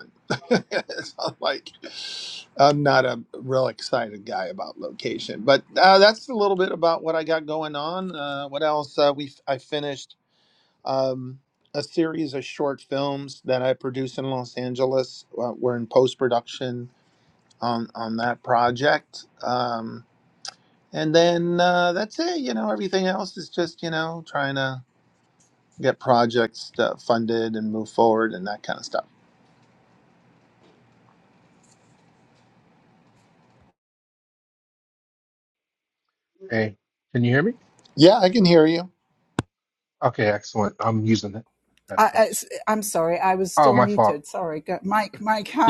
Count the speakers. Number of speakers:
3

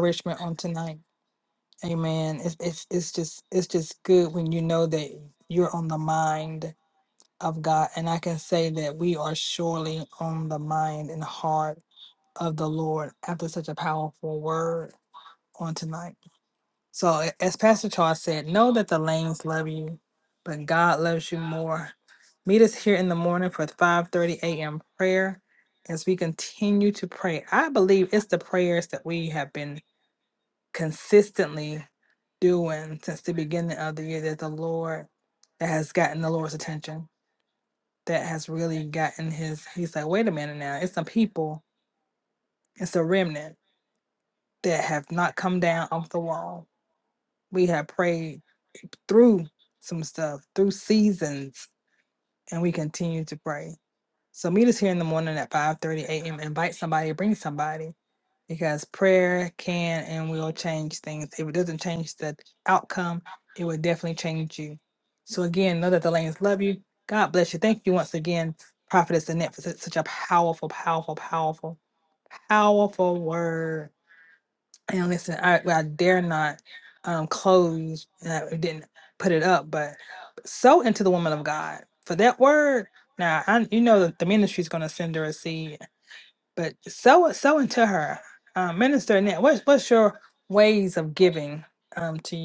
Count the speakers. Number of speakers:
1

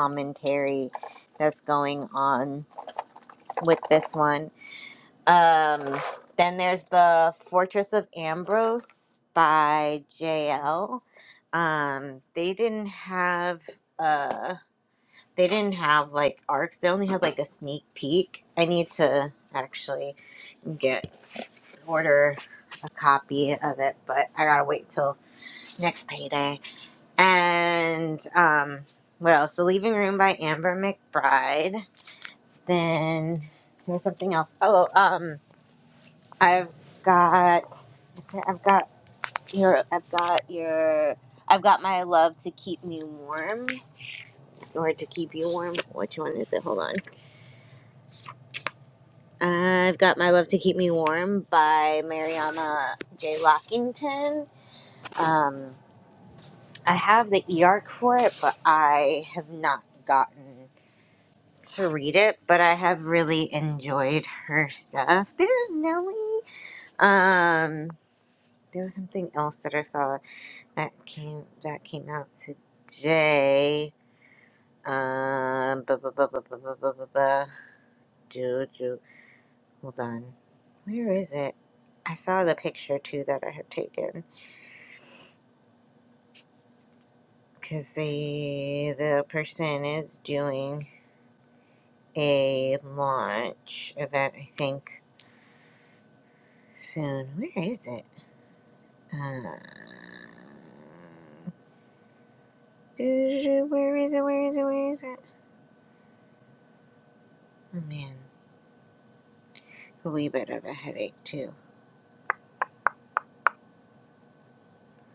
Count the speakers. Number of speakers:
1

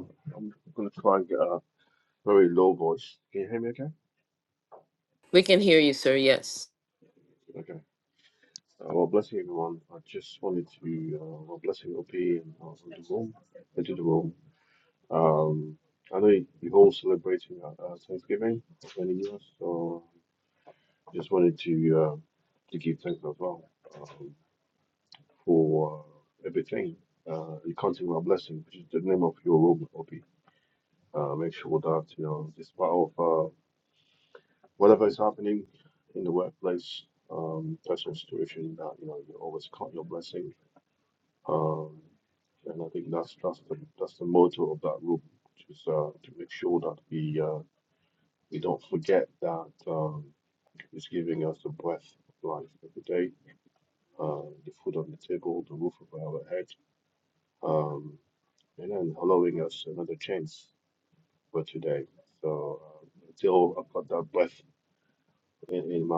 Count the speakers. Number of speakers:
2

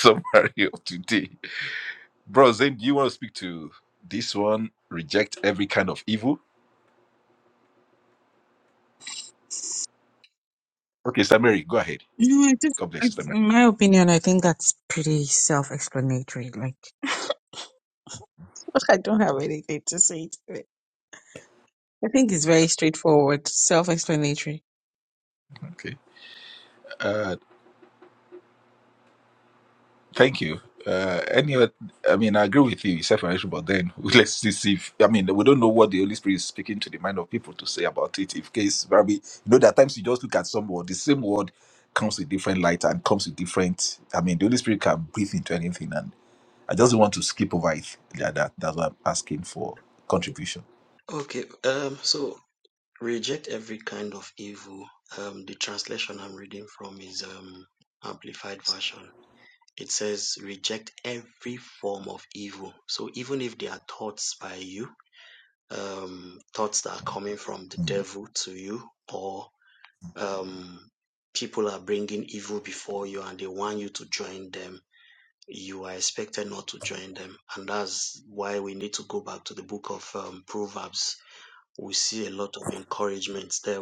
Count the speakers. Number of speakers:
3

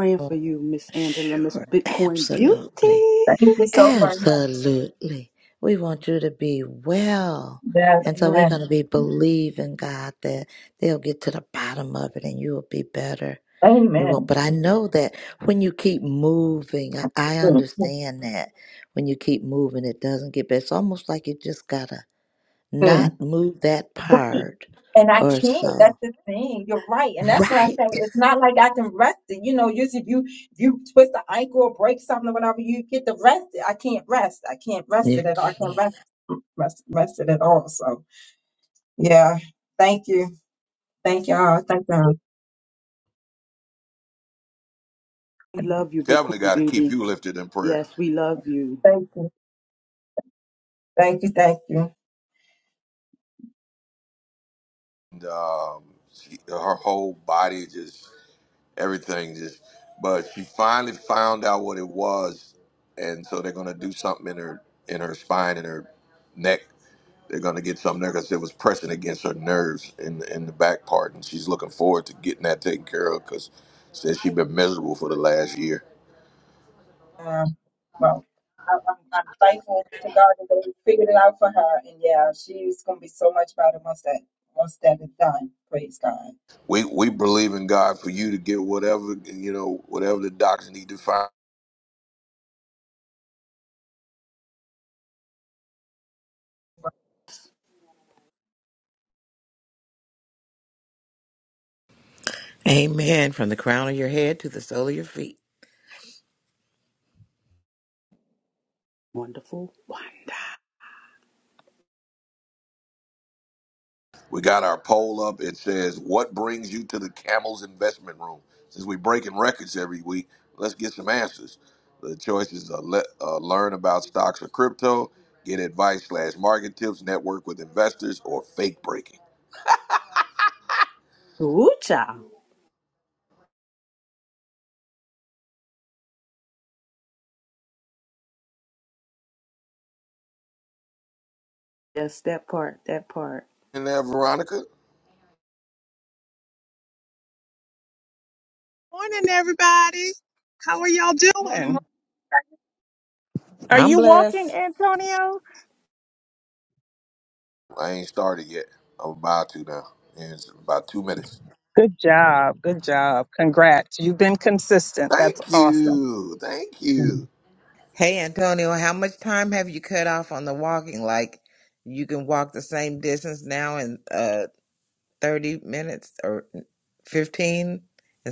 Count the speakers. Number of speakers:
6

